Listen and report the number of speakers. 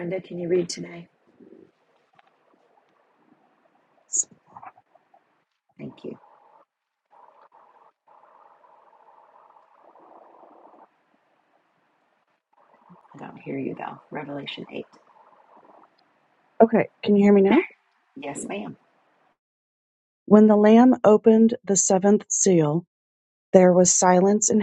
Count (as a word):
two